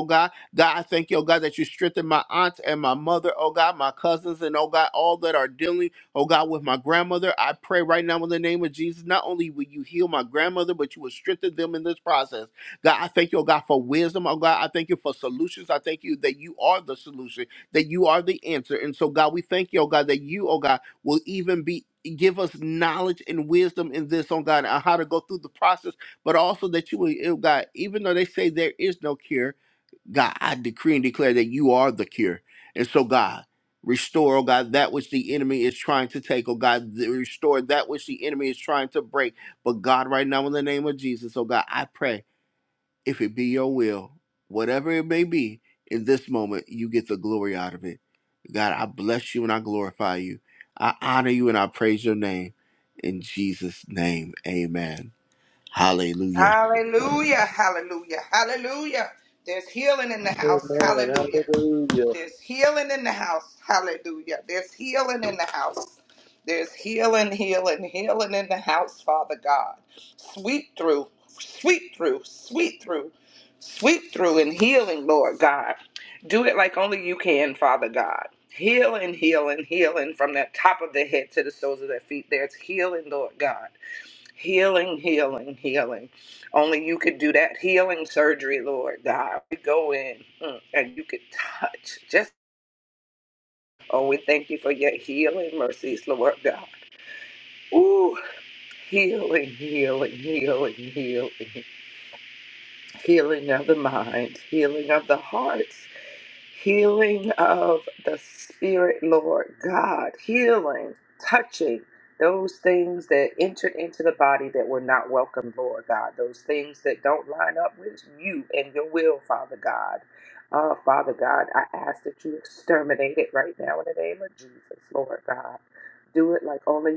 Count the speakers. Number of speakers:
three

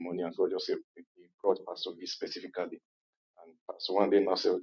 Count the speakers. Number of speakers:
one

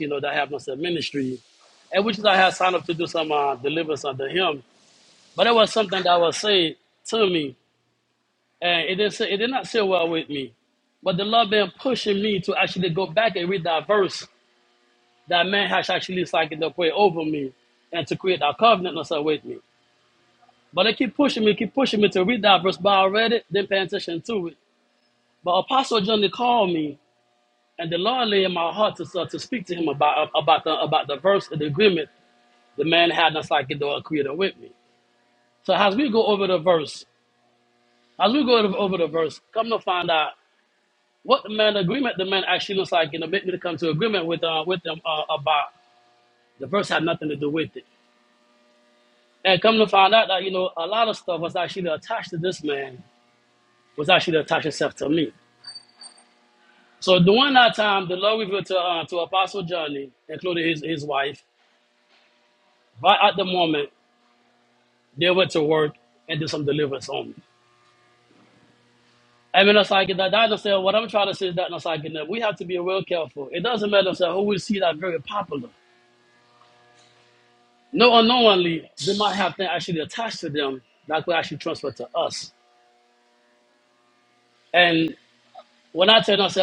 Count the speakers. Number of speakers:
one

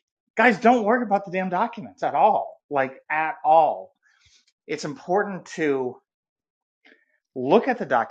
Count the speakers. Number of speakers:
one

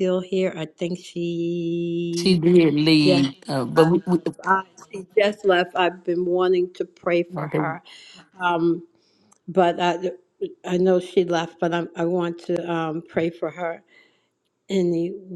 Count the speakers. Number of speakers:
two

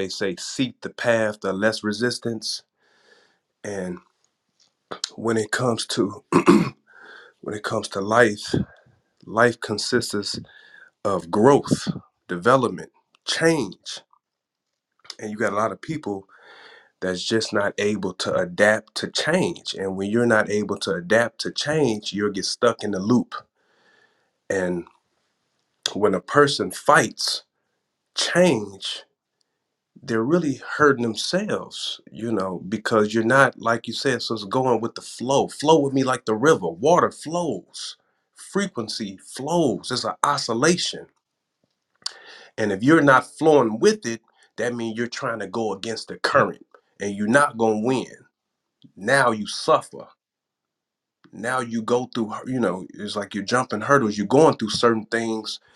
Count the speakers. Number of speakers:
one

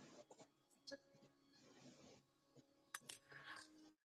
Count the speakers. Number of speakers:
zero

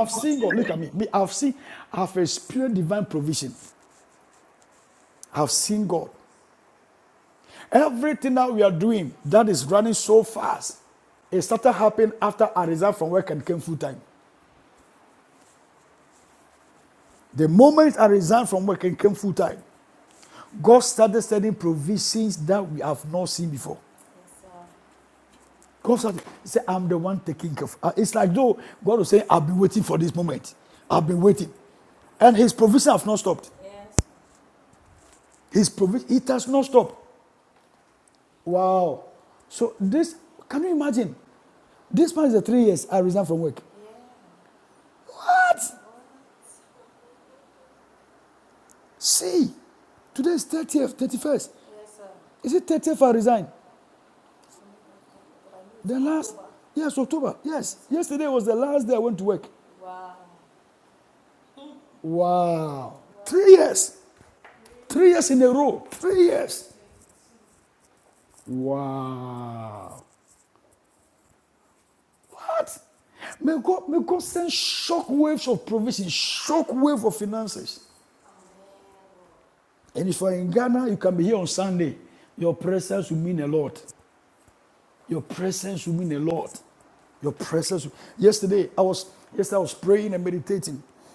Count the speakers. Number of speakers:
one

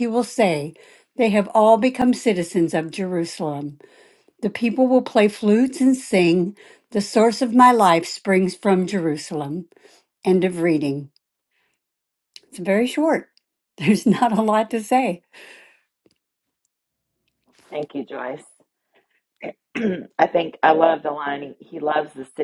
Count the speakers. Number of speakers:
two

